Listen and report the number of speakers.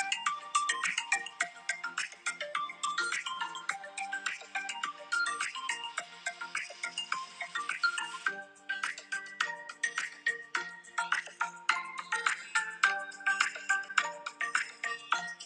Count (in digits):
0